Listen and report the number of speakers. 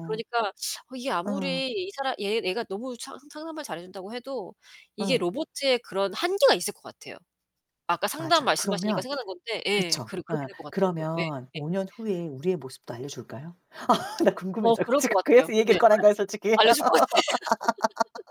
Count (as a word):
two